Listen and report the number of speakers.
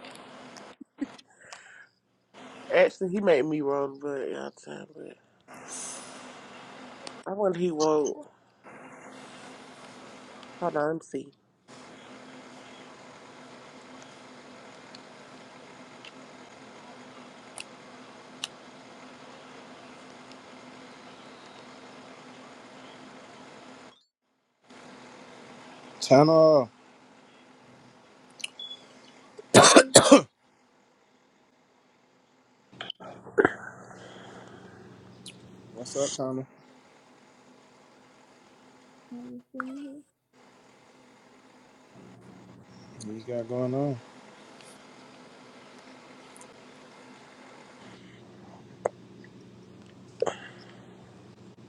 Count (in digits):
3